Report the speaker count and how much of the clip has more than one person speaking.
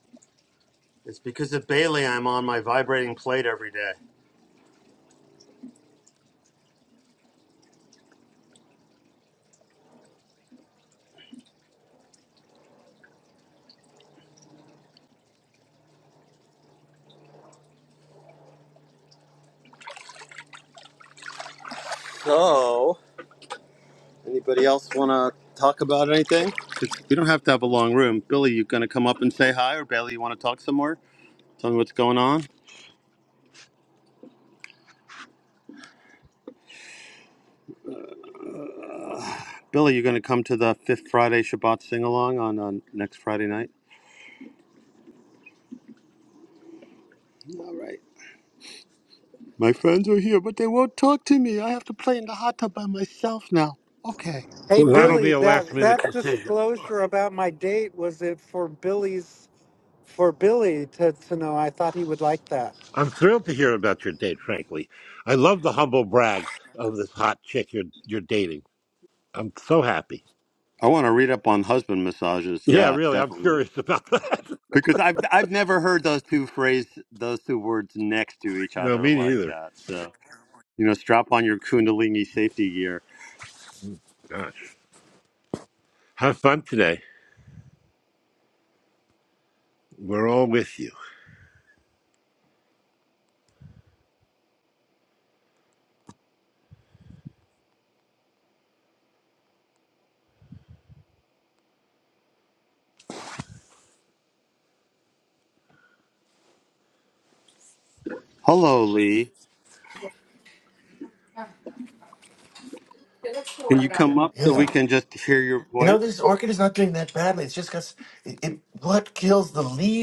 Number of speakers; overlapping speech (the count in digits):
4, about 3%